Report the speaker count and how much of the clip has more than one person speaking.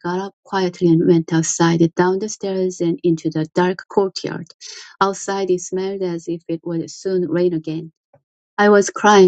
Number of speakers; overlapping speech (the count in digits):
1, no overlap